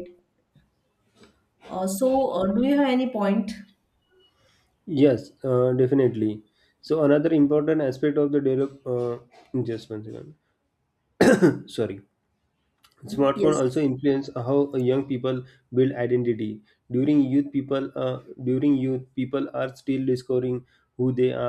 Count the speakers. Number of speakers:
2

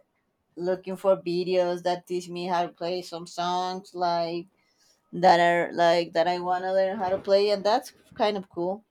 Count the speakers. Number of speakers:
1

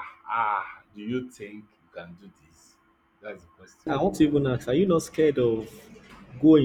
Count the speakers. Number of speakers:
2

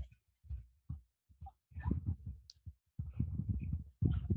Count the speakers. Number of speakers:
0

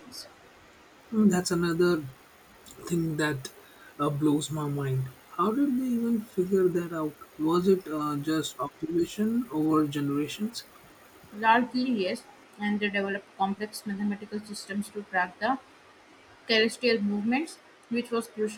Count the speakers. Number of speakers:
2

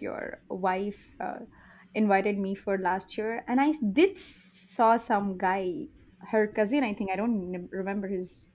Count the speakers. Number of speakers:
1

